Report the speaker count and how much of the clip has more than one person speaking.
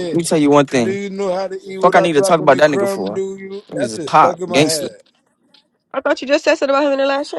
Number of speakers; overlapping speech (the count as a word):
three, about 39%